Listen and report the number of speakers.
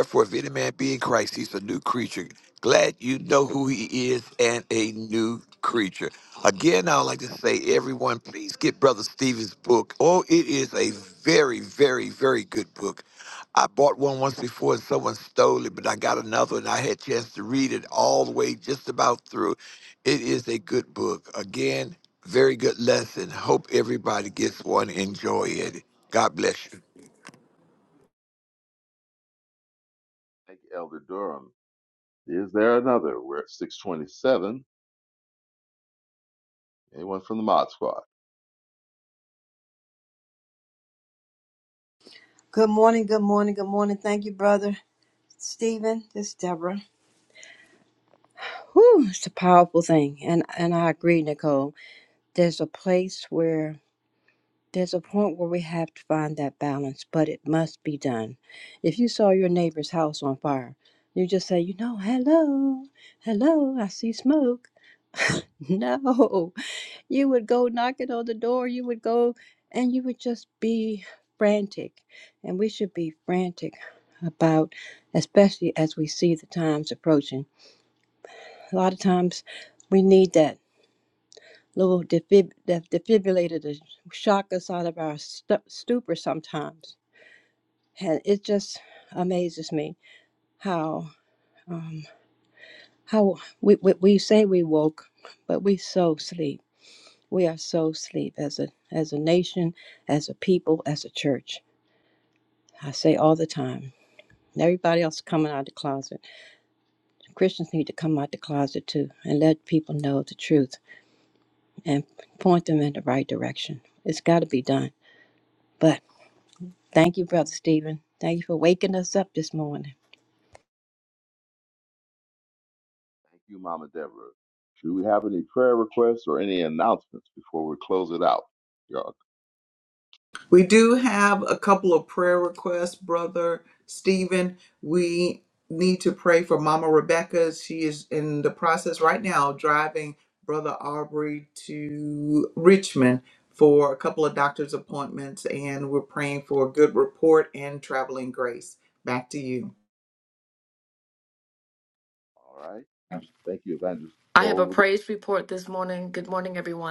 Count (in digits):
5